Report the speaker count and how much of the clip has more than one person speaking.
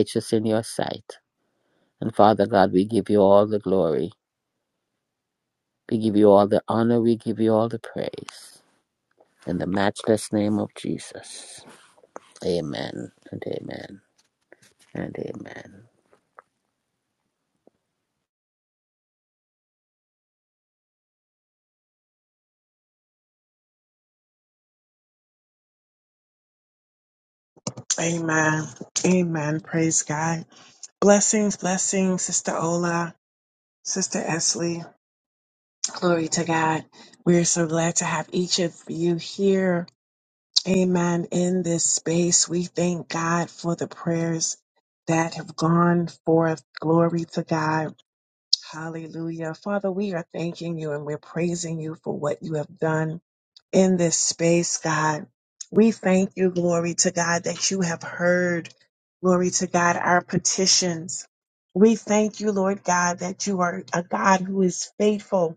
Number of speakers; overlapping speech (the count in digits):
2, no overlap